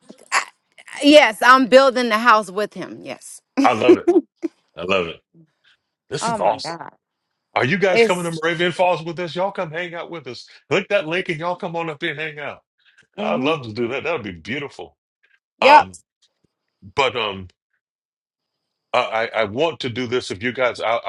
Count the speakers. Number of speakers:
two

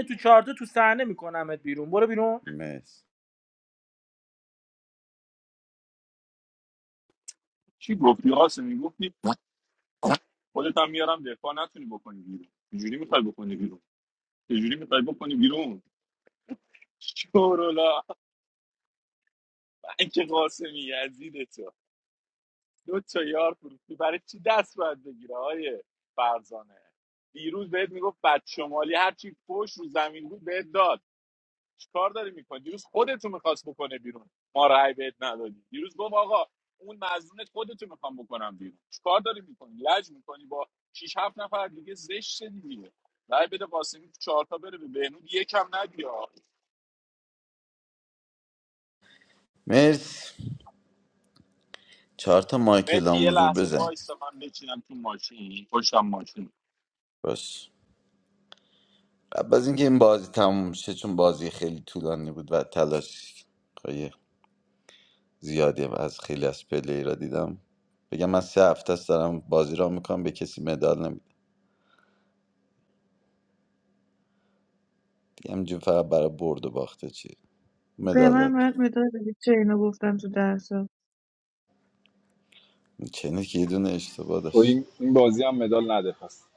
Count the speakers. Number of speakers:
five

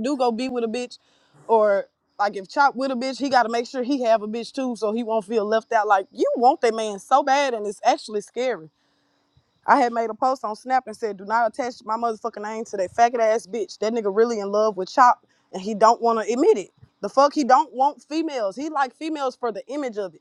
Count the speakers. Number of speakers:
one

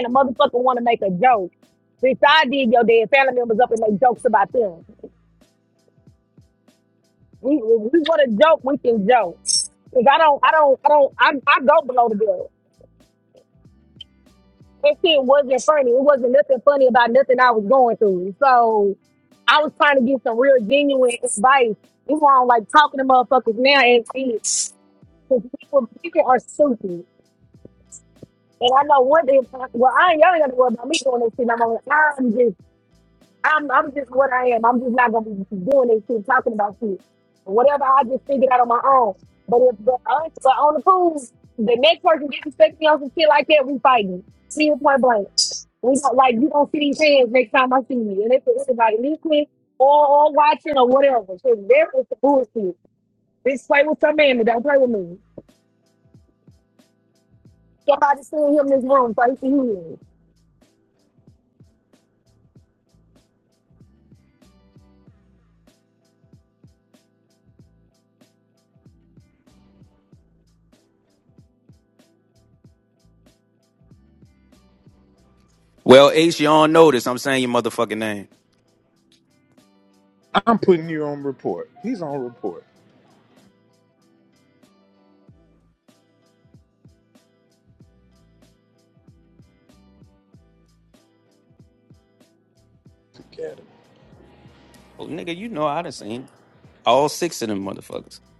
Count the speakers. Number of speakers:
three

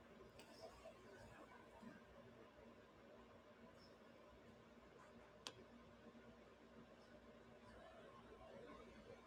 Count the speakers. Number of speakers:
zero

